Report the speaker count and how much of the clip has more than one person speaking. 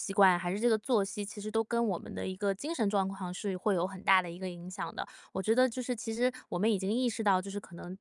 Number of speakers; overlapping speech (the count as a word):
one, no overlap